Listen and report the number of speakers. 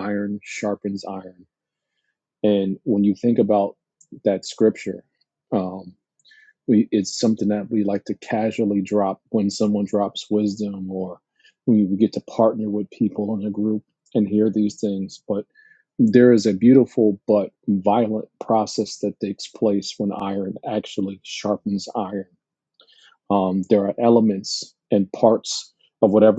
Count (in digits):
1